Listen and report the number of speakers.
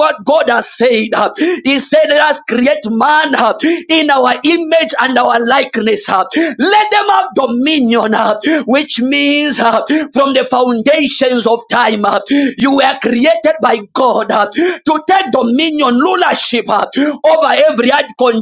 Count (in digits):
1